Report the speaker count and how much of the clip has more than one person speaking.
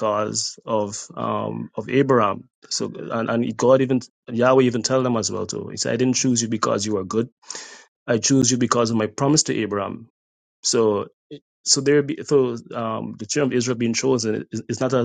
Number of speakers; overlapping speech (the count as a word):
one, no overlap